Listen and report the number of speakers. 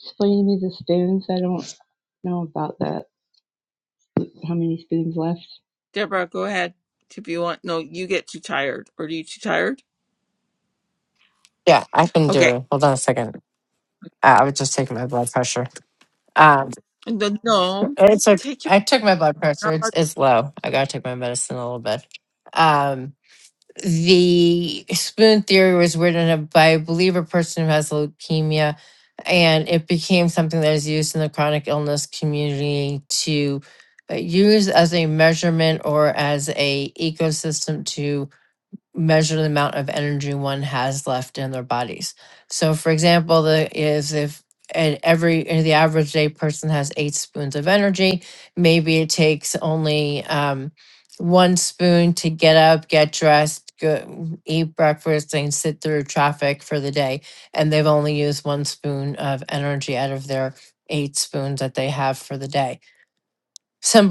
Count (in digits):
3